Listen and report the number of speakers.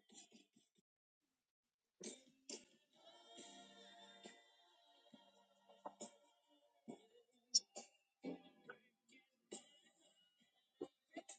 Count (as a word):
zero